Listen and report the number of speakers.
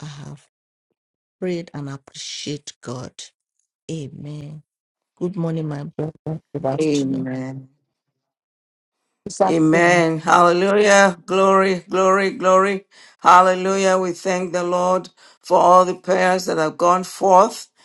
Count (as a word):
two